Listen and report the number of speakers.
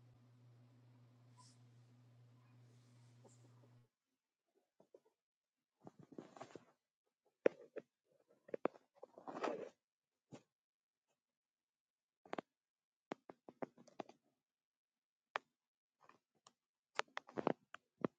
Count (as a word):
zero